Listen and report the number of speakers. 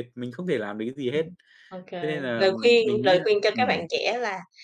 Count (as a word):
two